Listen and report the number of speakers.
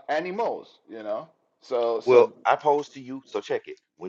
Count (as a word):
two